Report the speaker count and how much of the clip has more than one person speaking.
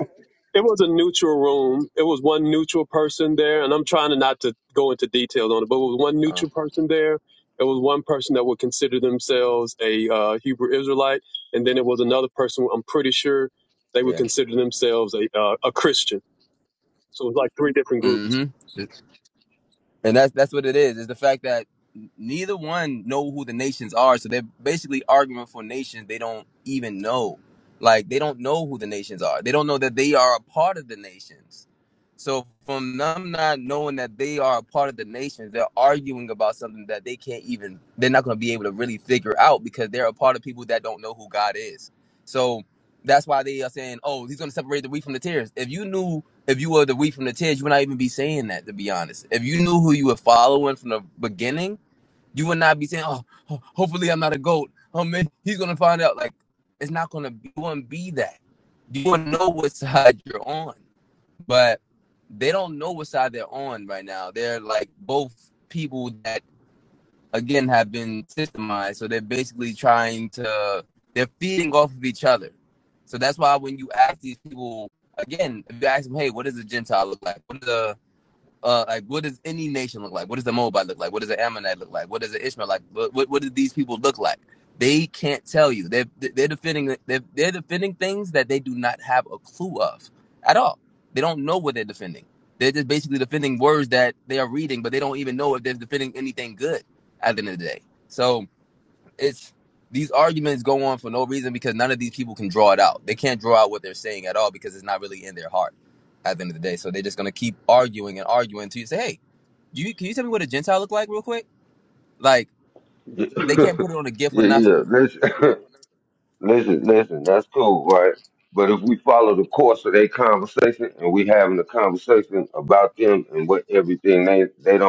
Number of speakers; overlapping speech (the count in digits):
3, about 1%